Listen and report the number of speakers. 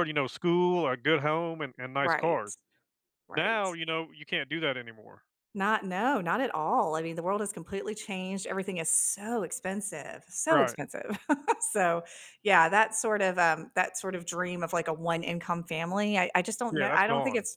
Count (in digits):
2